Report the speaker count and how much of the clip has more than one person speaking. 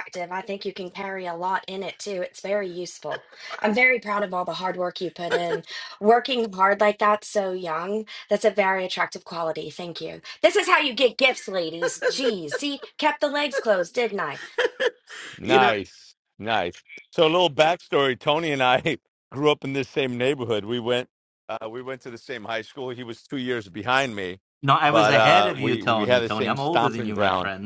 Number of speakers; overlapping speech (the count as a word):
three, about 10%